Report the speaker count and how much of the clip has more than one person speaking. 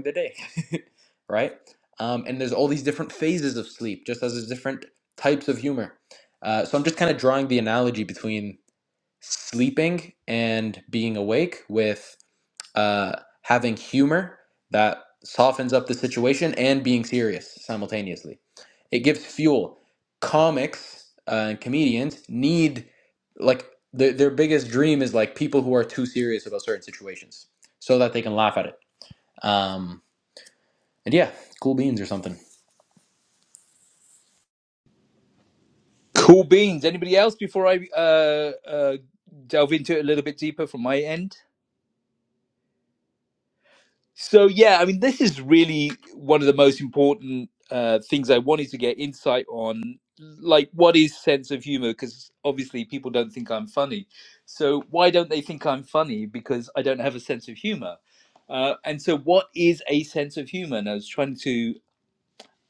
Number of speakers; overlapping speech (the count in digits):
2, no overlap